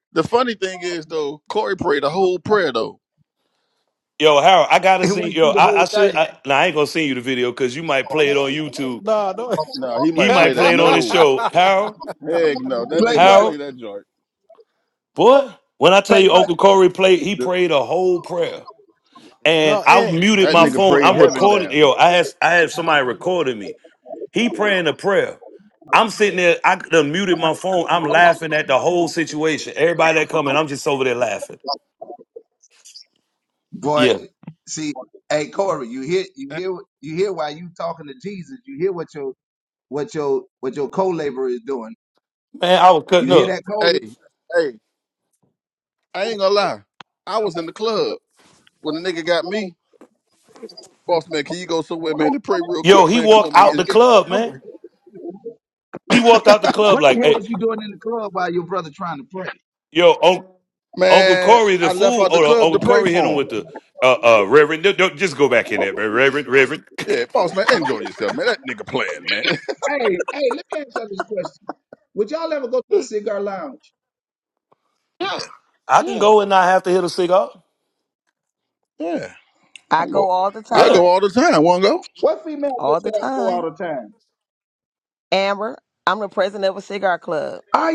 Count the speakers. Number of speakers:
5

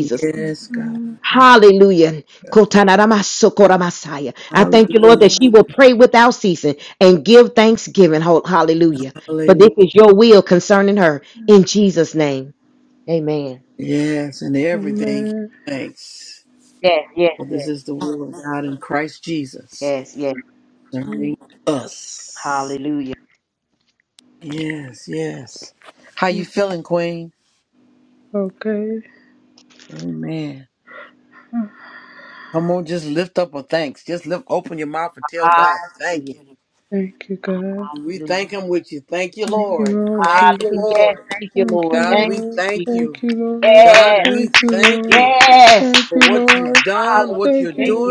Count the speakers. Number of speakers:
3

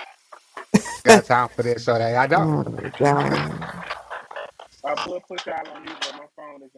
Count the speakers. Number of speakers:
3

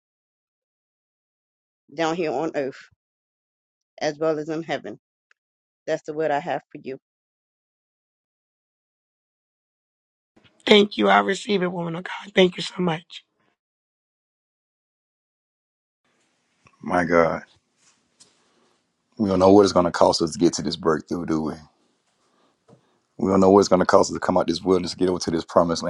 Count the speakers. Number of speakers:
3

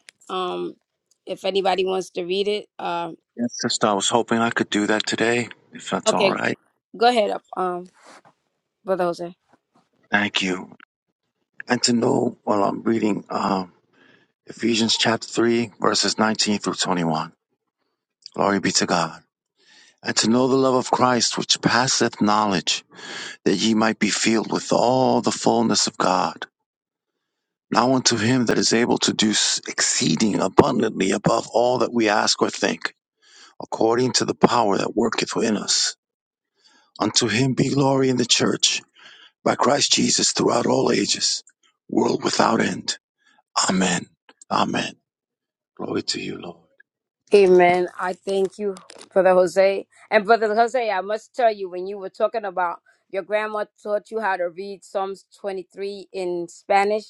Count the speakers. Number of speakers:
2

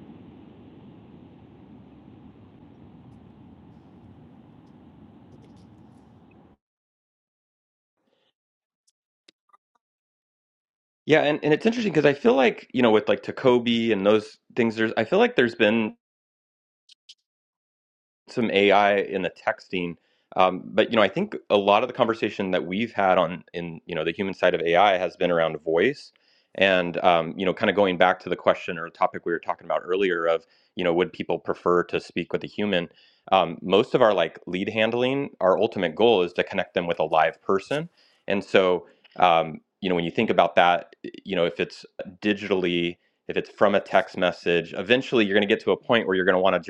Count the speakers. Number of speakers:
1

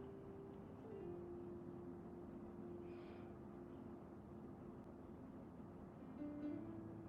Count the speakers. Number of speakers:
0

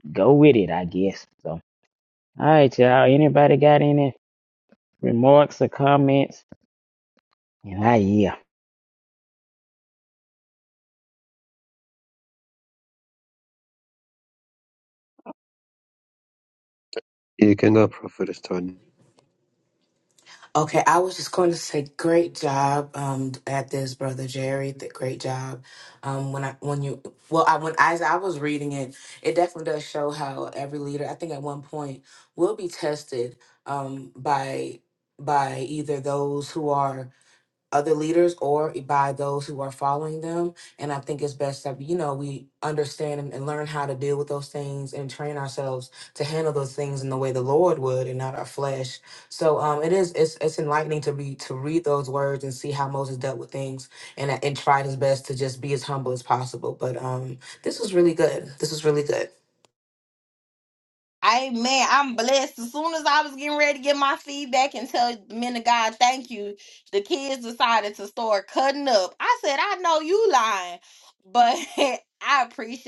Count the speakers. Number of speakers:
4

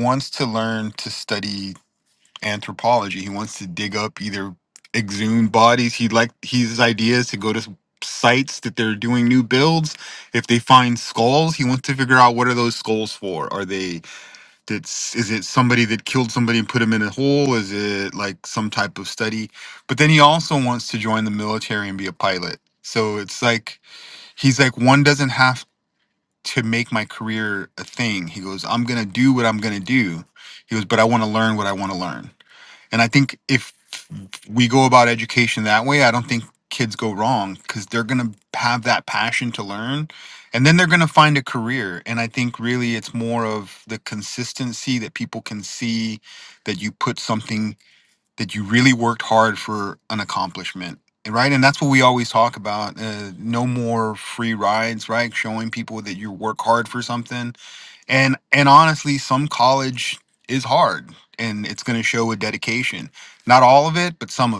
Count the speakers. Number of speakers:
1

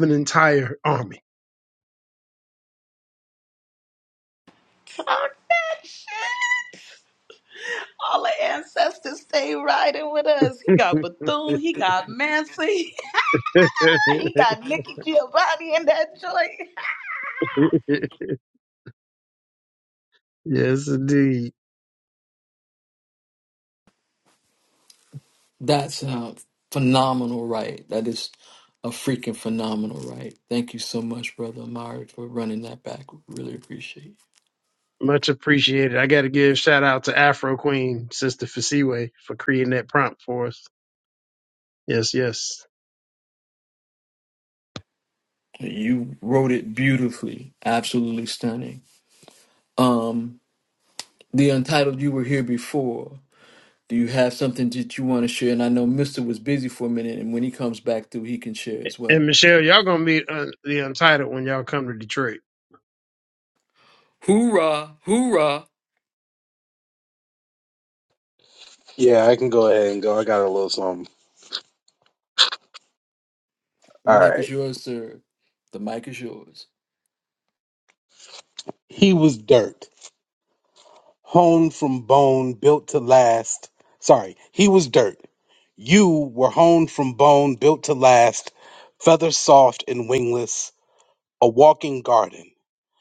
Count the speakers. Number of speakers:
4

